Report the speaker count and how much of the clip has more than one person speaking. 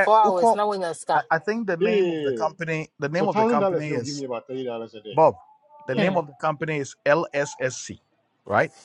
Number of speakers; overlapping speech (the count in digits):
3, about 27%